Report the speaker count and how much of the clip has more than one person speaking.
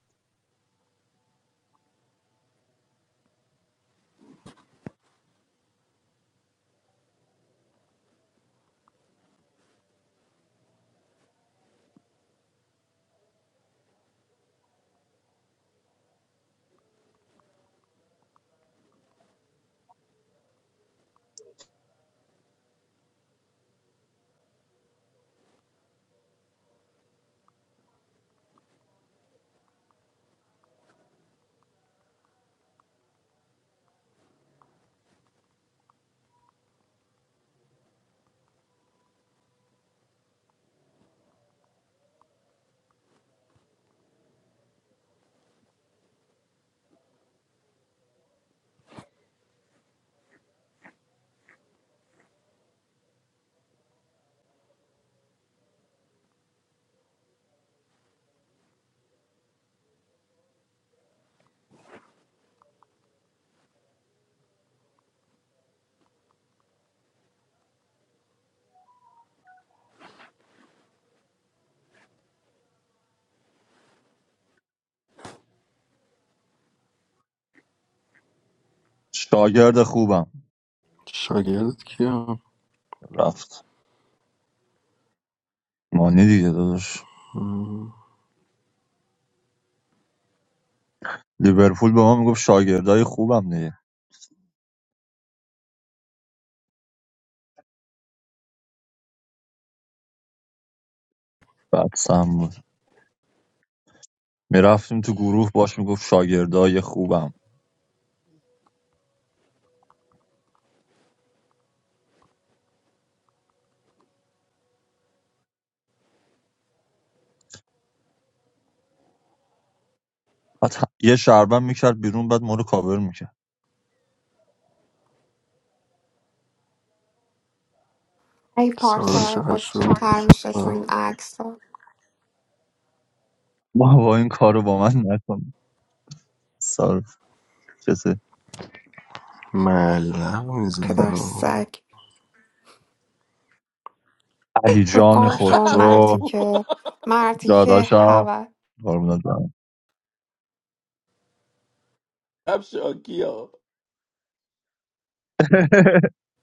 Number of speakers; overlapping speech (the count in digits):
4, about 3%